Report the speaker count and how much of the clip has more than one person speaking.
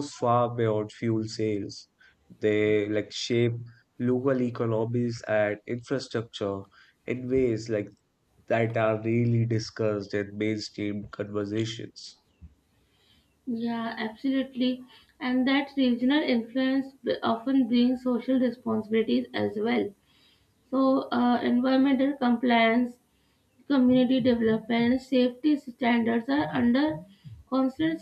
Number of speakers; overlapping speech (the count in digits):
2, no overlap